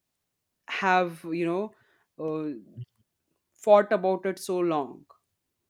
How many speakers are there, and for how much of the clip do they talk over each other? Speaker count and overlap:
one, no overlap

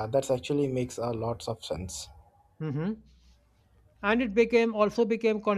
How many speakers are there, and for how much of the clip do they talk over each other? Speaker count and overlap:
two, no overlap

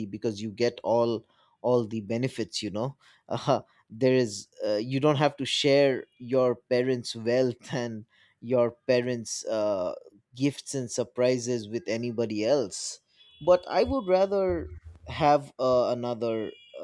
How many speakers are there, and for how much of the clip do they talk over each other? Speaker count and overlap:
one, no overlap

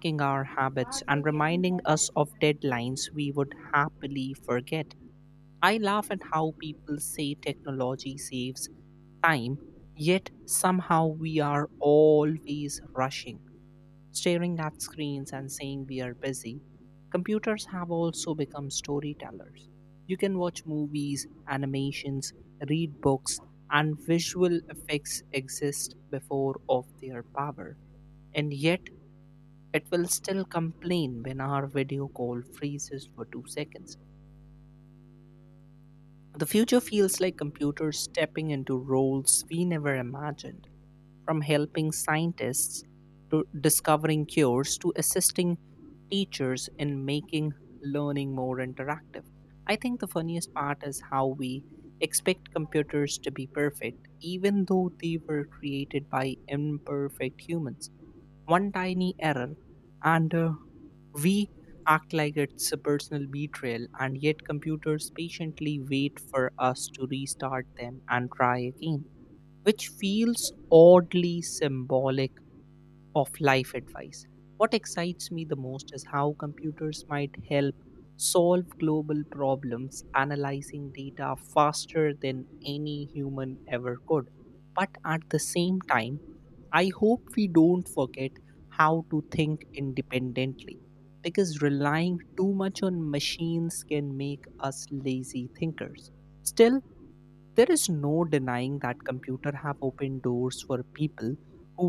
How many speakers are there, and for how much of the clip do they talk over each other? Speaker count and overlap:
one, no overlap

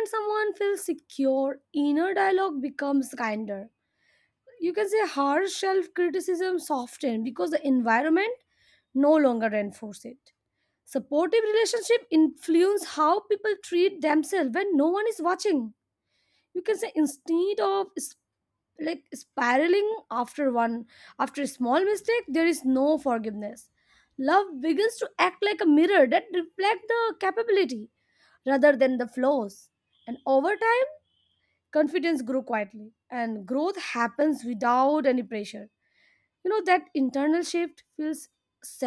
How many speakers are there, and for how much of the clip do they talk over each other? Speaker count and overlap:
one, no overlap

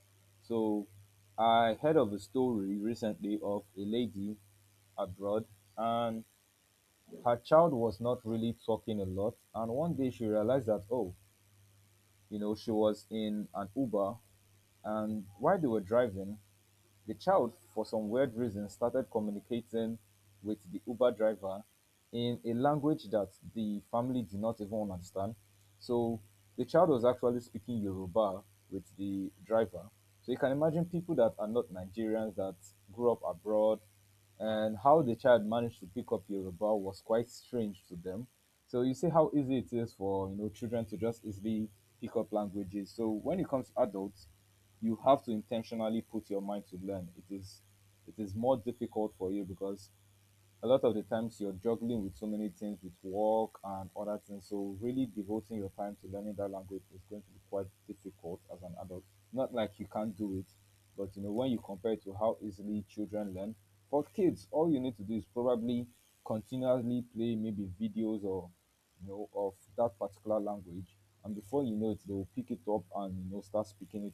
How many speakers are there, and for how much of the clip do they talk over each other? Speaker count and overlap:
one, no overlap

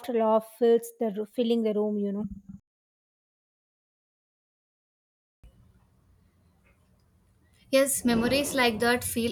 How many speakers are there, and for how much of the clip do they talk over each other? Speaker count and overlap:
two, no overlap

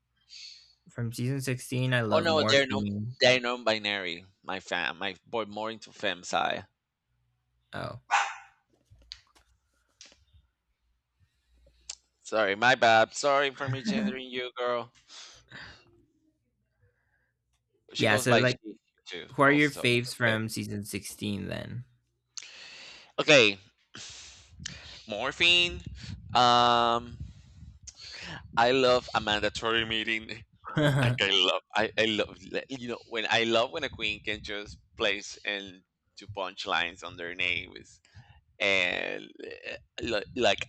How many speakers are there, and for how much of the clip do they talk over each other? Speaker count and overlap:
two, about 5%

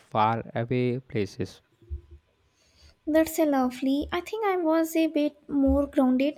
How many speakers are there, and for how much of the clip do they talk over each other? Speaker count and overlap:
two, no overlap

